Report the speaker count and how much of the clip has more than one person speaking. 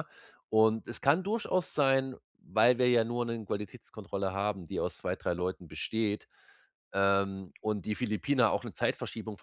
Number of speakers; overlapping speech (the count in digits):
1, no overlap